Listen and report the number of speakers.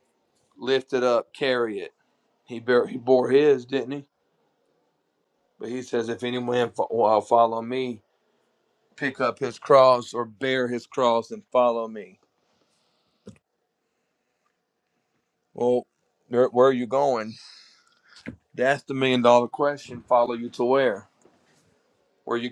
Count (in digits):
1